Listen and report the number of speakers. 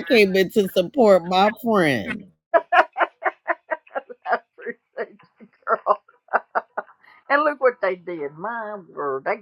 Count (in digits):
2